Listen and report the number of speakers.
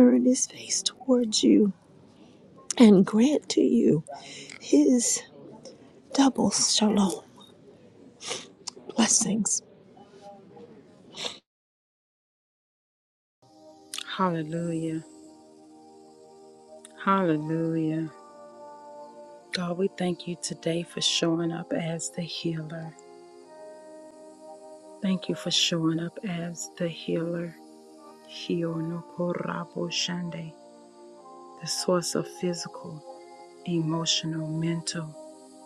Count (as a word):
two